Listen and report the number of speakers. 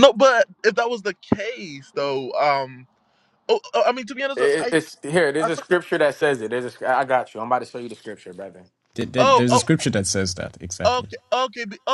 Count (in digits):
3